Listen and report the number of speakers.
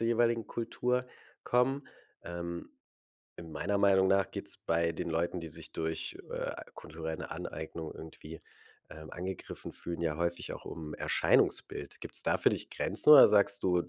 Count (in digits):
1